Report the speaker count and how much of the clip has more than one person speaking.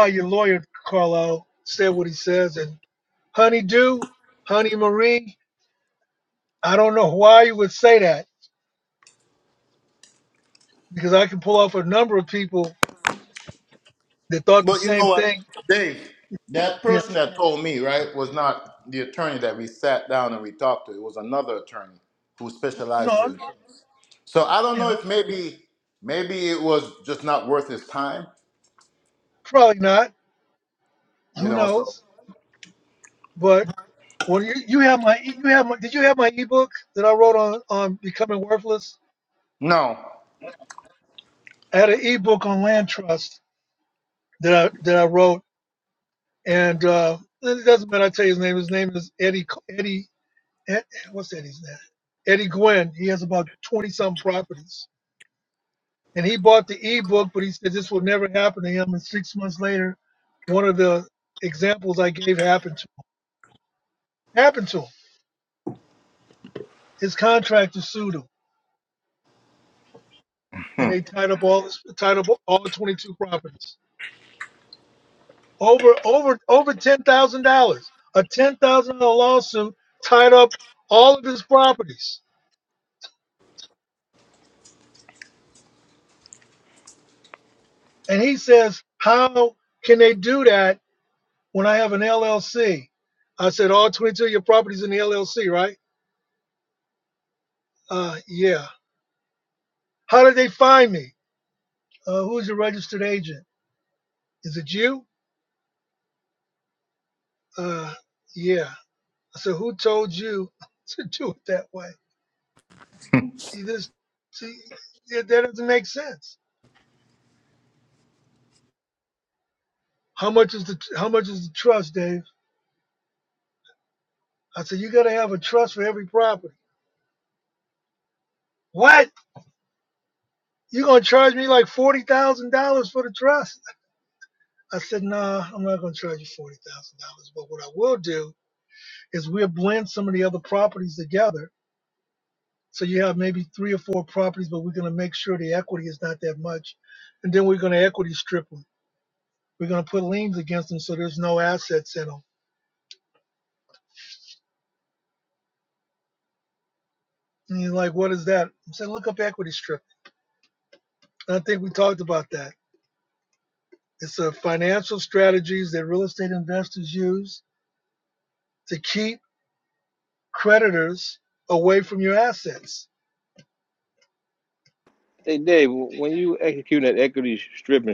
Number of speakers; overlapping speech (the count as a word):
three, about 1%